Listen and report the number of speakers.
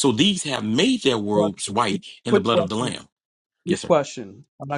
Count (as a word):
two